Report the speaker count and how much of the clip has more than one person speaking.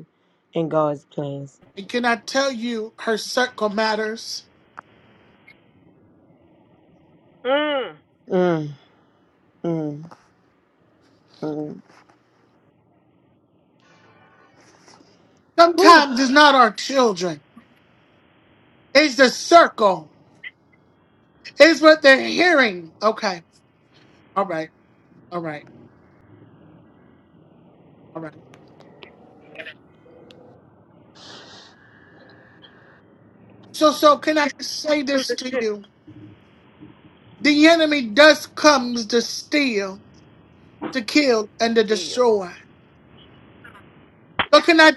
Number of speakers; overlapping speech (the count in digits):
3, about 3%